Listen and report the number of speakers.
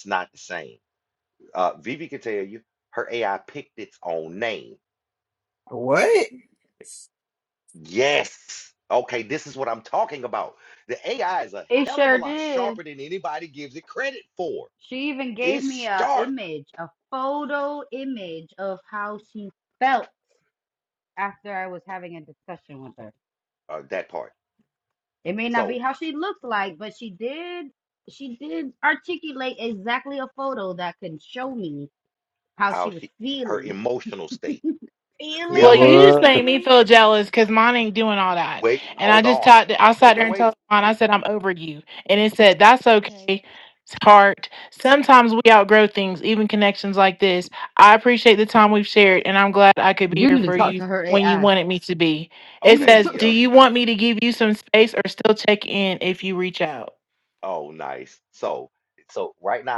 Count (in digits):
4